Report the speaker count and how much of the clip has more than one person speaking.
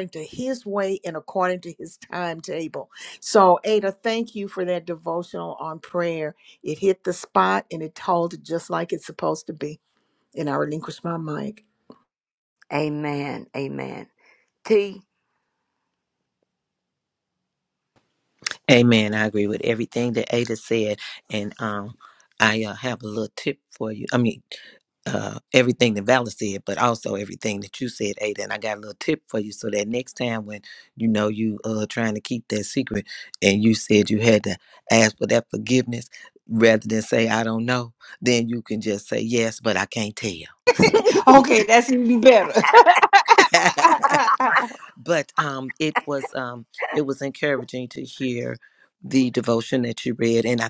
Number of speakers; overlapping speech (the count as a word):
four, no overlap